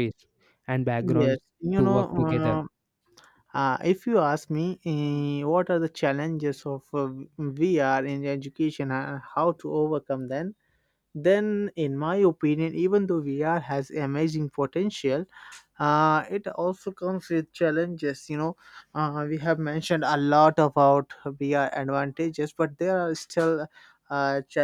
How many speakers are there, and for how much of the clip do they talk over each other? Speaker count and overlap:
2, about 5%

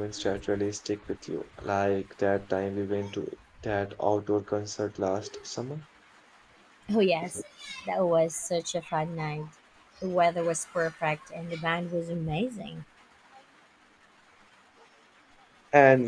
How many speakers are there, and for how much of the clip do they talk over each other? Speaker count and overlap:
2, no overlap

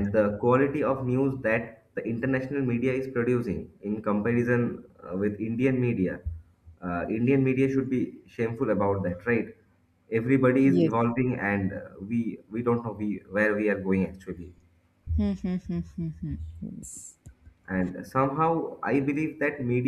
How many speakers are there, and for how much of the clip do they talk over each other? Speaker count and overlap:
2, about 1%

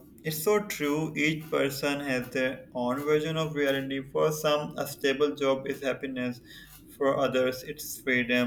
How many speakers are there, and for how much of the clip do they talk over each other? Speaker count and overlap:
1, no overlap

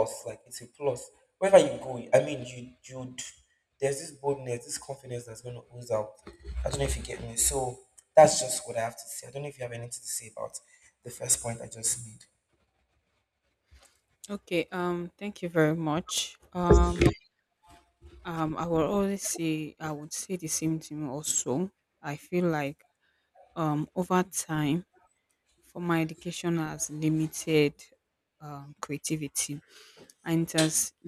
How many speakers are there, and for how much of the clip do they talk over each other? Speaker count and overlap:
2, no overlap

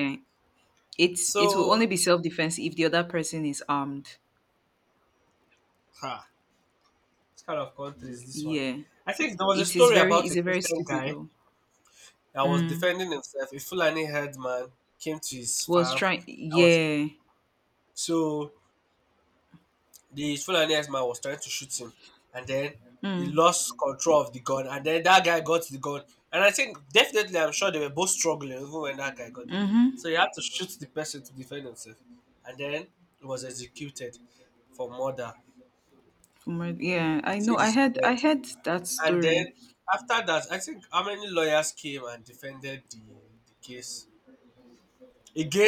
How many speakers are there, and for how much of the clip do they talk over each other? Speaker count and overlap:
2, about 10%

